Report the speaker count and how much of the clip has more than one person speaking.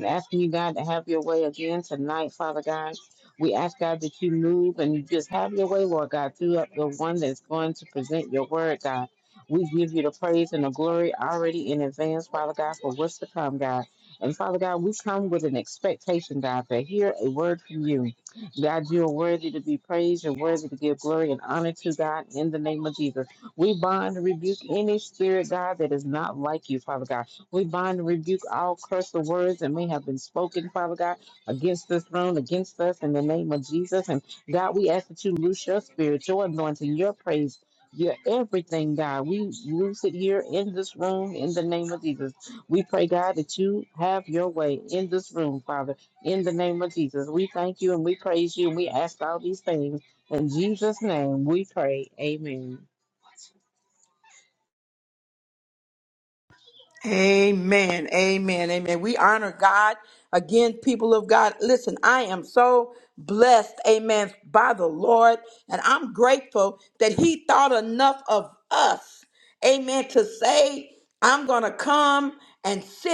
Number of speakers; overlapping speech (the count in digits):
2, no overlap